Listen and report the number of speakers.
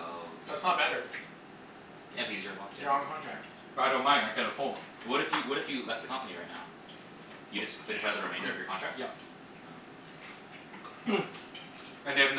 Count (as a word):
three